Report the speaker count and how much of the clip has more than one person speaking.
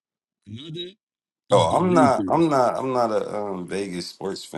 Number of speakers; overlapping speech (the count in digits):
2, about 21%